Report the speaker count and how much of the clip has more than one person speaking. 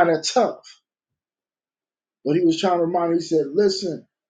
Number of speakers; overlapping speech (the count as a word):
one, no overlap